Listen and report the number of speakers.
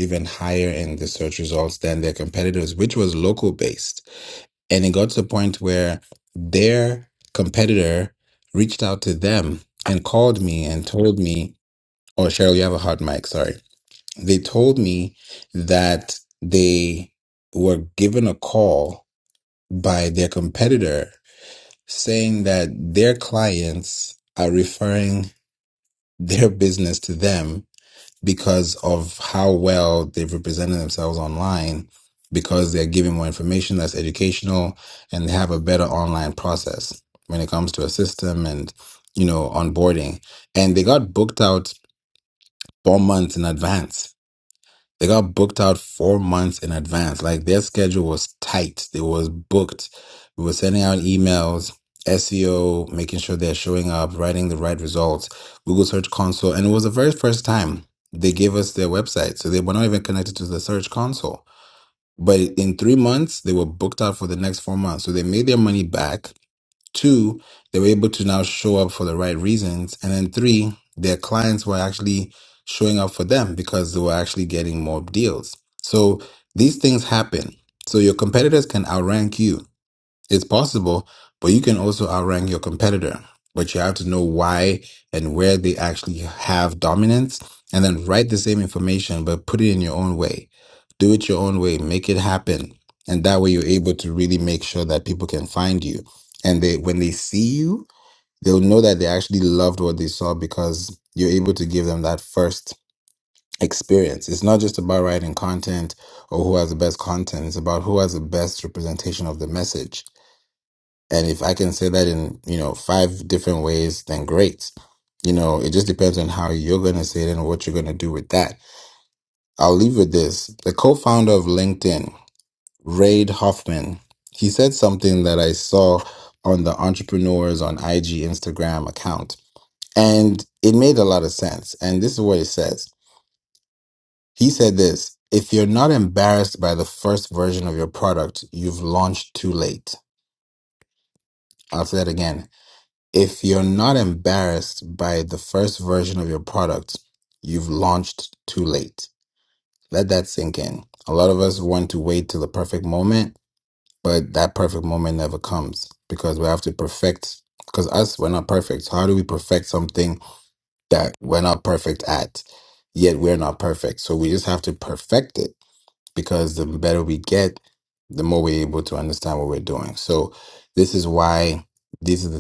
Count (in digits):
1